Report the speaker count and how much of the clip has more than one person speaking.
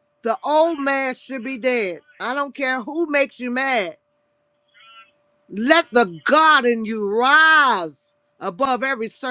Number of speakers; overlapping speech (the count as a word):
one, no overlap